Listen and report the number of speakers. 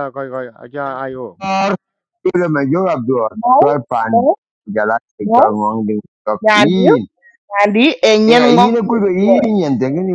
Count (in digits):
3